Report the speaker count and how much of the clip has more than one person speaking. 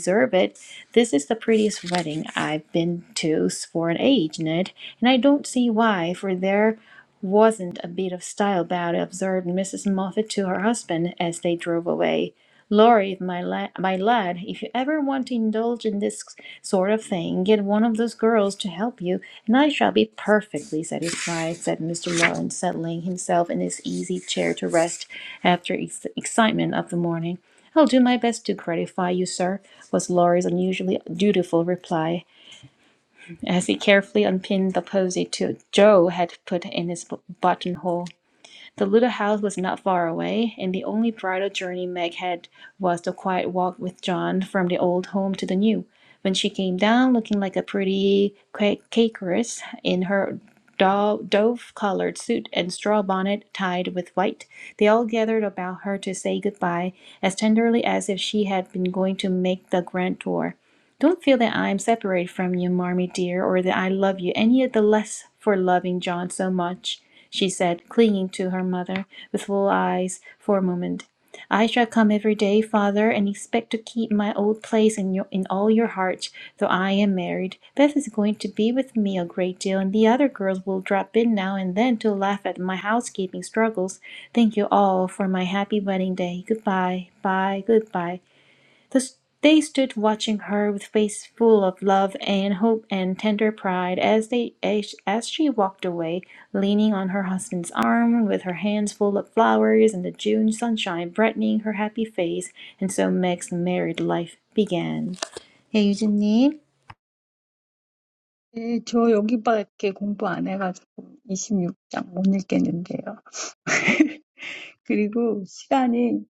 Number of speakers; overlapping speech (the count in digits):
2, no overlap